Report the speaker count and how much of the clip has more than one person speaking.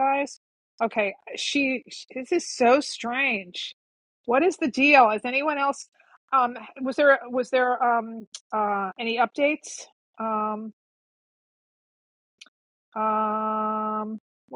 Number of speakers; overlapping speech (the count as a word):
one, no overlap